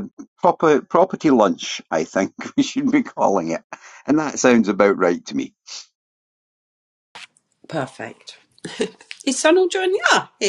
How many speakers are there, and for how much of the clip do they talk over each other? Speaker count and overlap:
two, no overlap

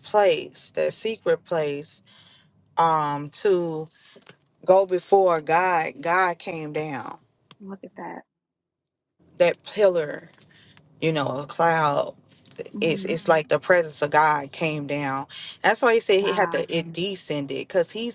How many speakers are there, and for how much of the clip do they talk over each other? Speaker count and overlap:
two, about 4%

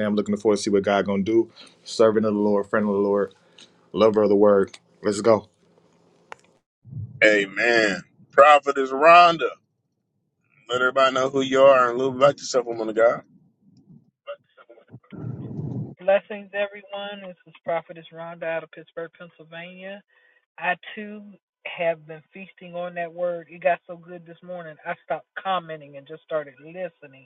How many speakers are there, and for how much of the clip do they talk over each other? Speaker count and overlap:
three, no overlap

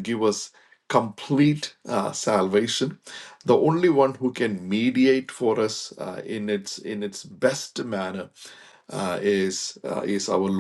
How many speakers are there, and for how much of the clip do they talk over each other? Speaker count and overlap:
one, no overlap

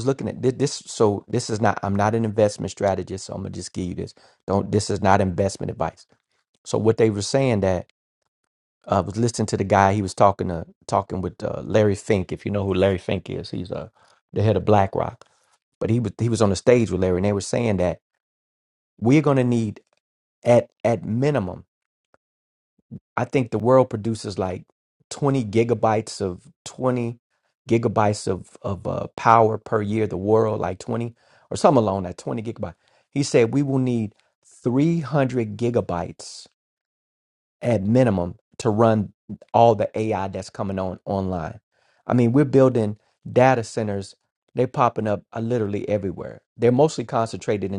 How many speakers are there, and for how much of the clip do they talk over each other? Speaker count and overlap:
one, no overlap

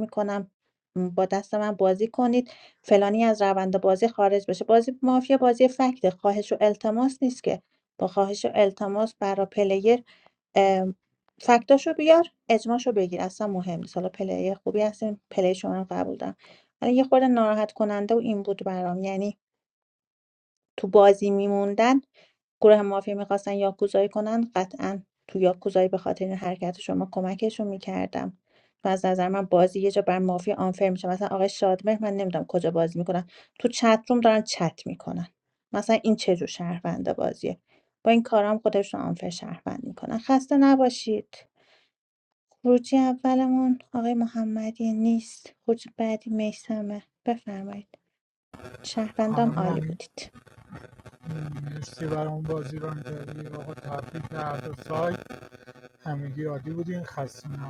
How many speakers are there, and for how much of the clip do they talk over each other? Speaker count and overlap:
two, about 1%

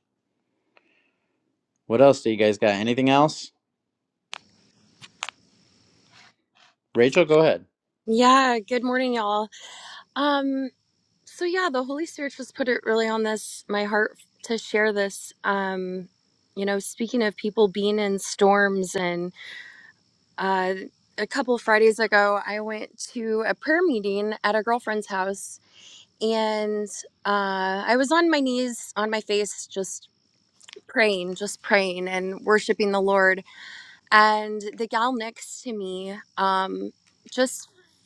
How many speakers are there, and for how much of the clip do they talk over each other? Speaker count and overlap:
two, no overlap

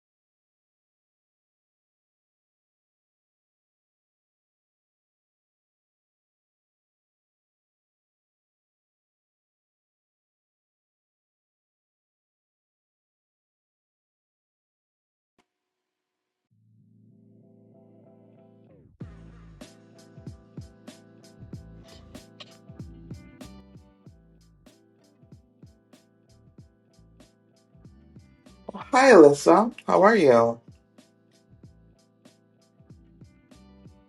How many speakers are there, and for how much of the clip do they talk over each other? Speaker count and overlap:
one, no overlap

